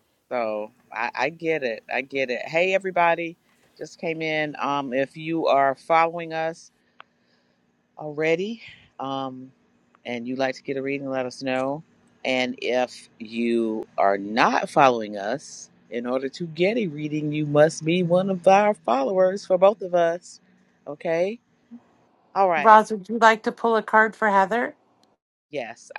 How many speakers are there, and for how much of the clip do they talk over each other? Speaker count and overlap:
2, about 1%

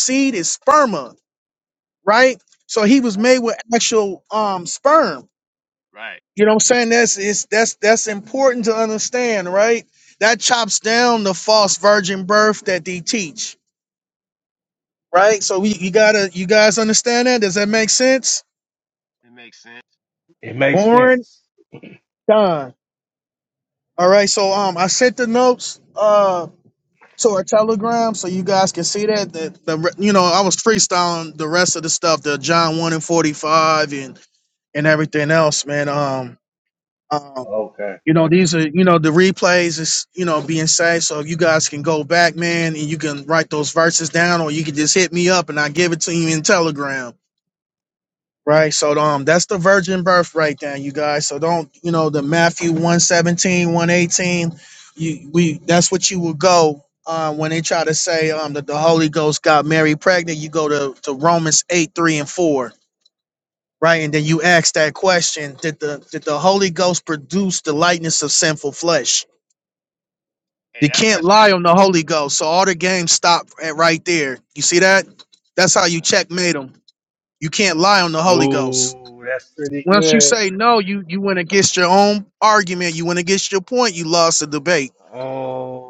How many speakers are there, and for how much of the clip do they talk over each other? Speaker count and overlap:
3, about 3%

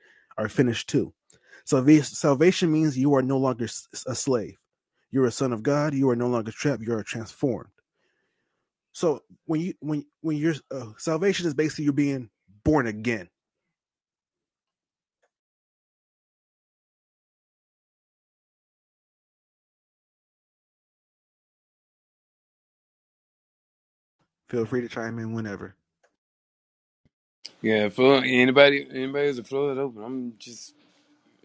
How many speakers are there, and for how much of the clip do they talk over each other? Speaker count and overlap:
2, no overlap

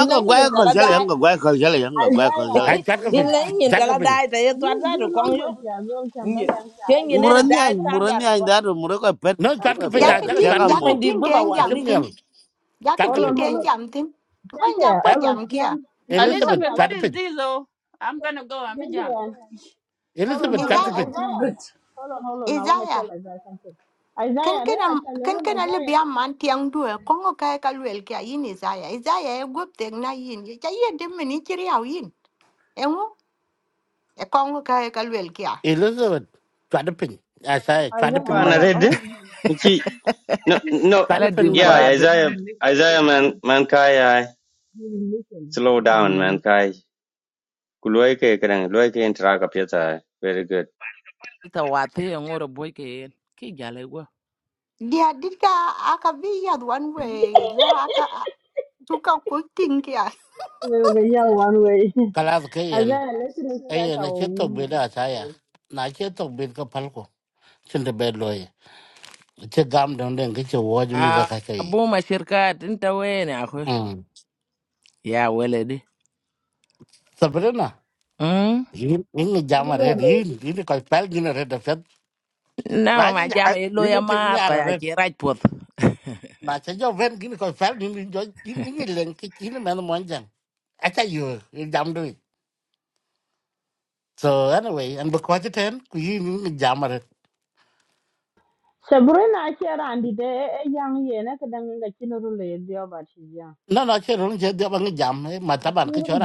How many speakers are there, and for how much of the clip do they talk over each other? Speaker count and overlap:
7, about 22%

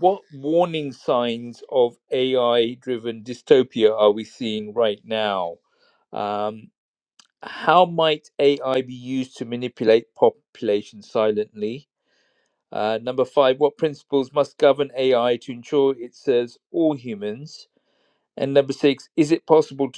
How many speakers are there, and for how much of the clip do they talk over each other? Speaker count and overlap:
1, no overlap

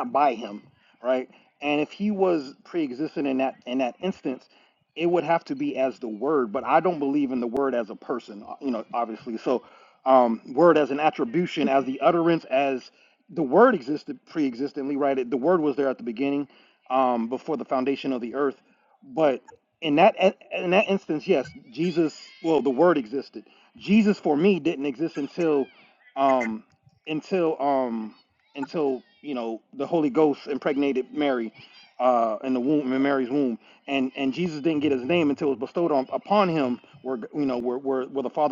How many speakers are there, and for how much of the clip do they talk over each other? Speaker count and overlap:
1, no overlap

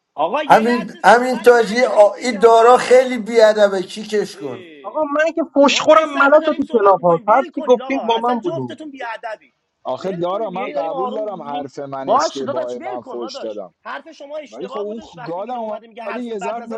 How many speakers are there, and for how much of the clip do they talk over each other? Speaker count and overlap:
4, about 69%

